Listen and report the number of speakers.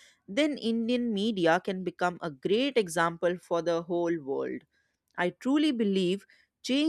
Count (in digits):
1